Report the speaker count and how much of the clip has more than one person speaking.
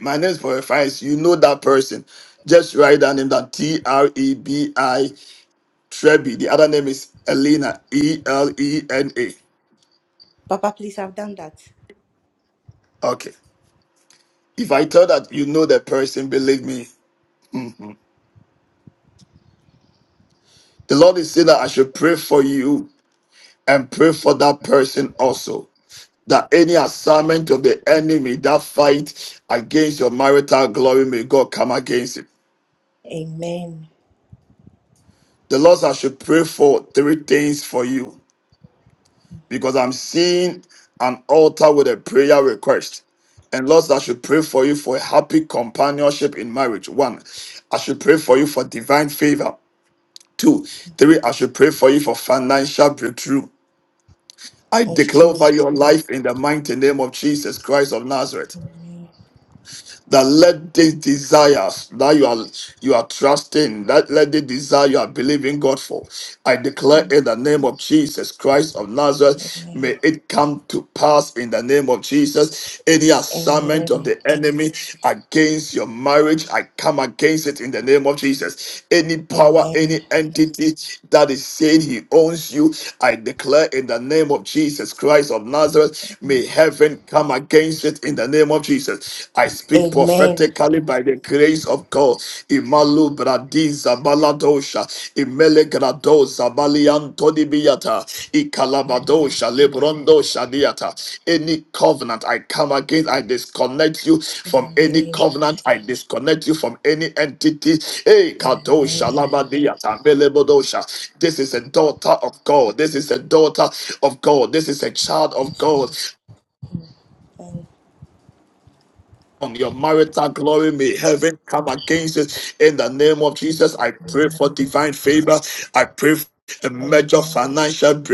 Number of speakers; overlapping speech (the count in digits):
2, about 5%